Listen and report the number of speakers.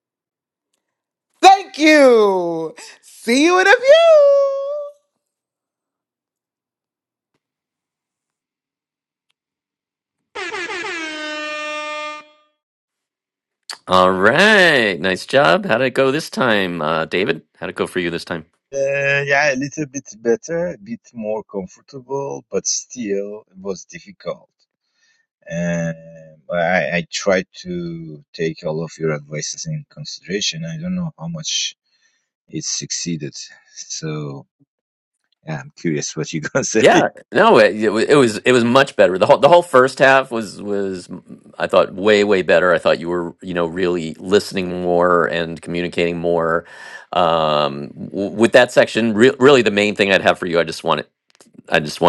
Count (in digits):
3